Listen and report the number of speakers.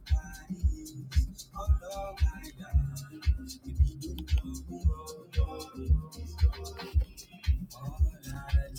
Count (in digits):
0